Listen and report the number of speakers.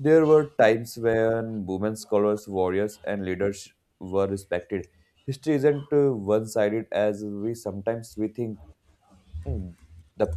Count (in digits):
1